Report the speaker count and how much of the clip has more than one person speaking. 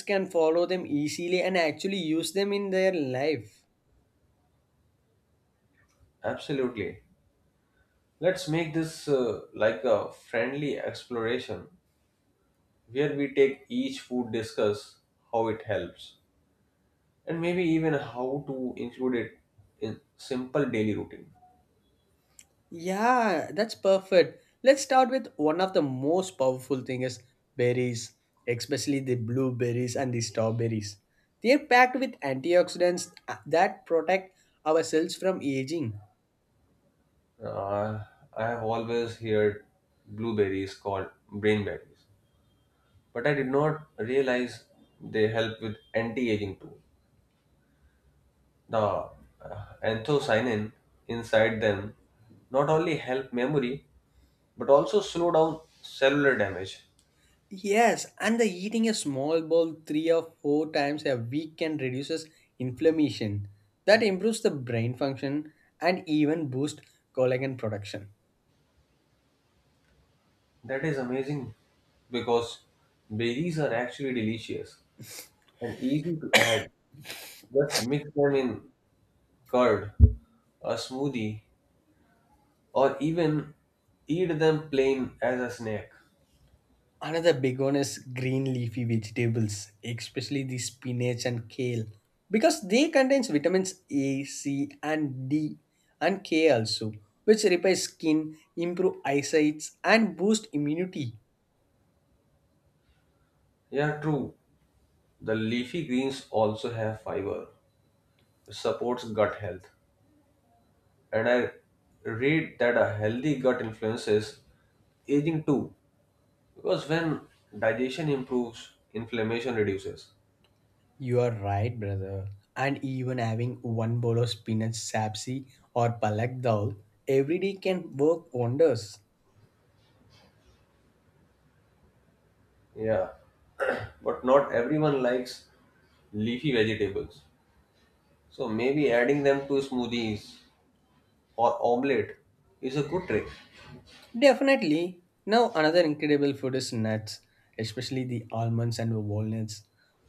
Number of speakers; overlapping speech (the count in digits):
2, no overlap